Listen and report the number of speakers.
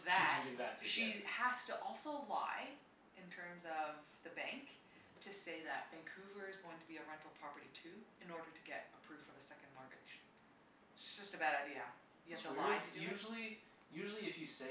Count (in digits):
2